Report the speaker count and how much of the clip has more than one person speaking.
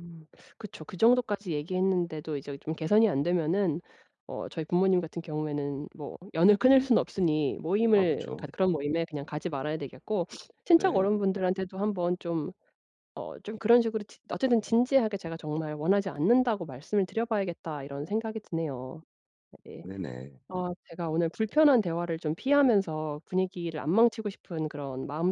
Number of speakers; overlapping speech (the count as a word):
two, about 3%